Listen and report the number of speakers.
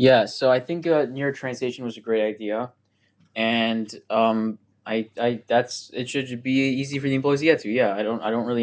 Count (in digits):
1